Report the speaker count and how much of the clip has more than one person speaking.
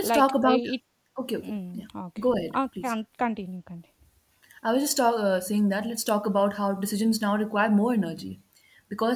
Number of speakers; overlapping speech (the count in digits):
2, about 20%